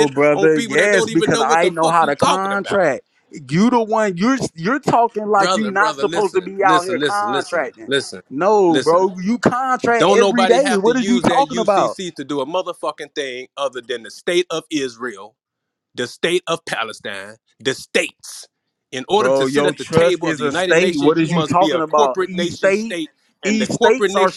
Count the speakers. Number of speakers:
two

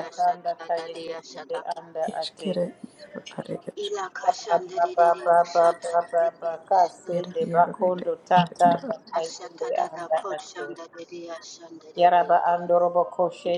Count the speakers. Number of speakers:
three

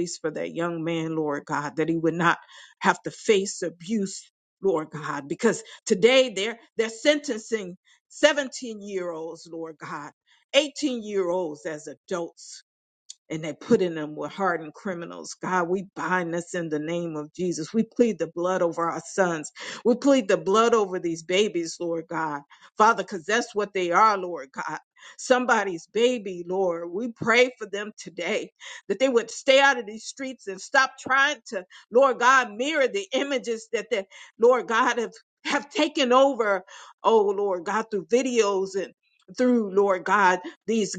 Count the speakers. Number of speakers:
one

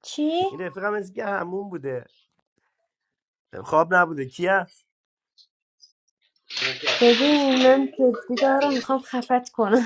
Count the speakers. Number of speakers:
three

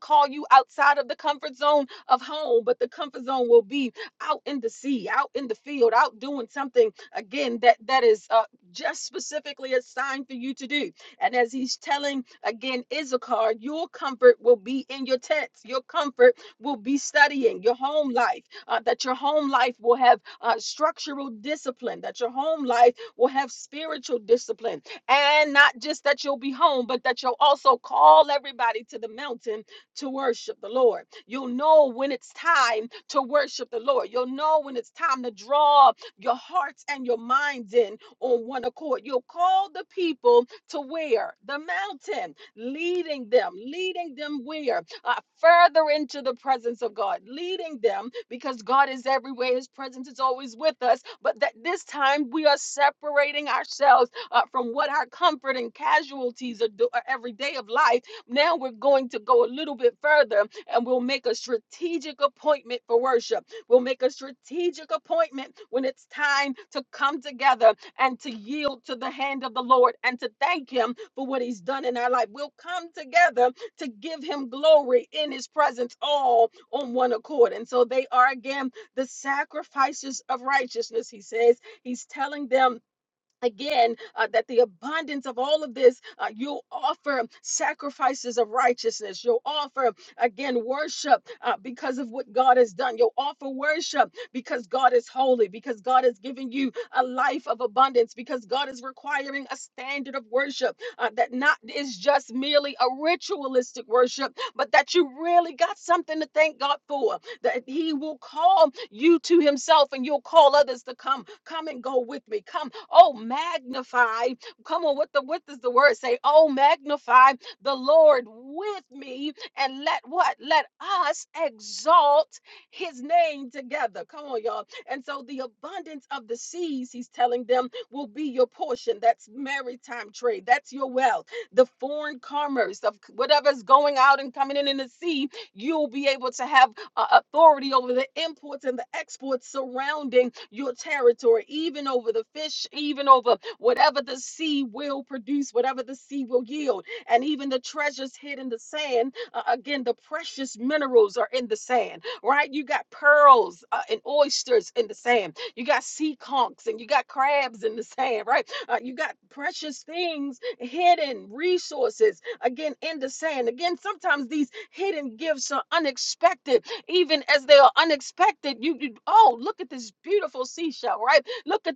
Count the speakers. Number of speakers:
one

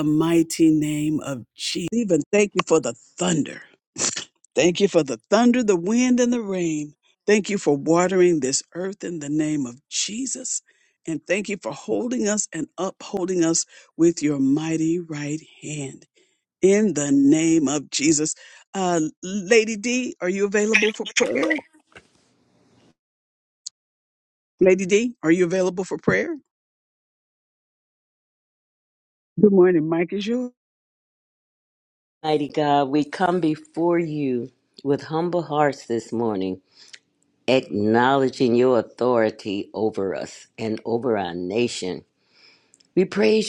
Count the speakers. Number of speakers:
two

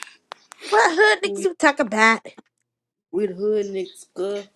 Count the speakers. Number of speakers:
two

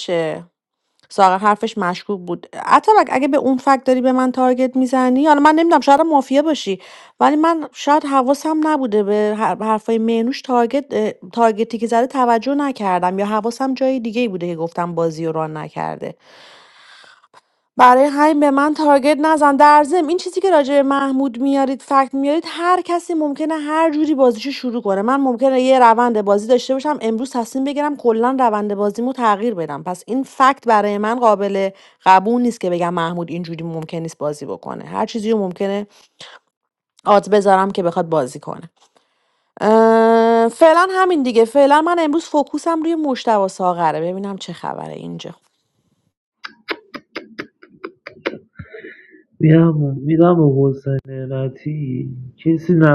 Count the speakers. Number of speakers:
two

